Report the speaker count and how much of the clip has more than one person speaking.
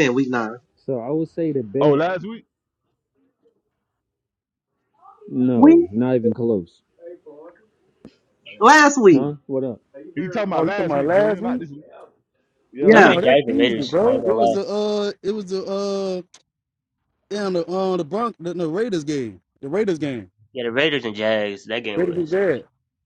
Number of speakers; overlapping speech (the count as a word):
five, about 16%